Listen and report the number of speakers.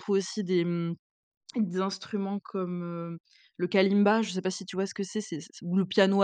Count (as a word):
one